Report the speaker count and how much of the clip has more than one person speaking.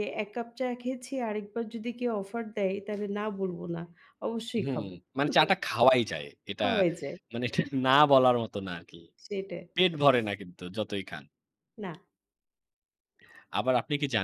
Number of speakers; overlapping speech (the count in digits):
2, about 3%